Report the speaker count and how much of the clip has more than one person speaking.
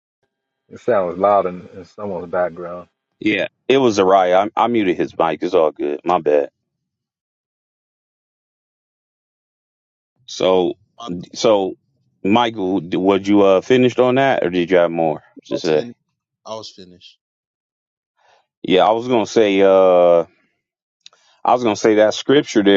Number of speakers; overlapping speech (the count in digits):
3, about 1%